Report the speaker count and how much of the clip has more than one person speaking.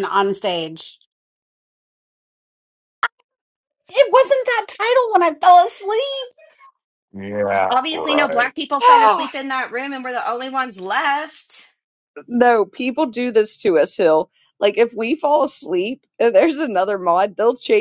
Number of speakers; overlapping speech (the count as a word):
four, about 8%